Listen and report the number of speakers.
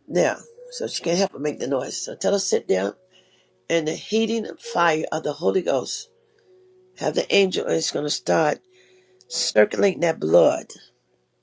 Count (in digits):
1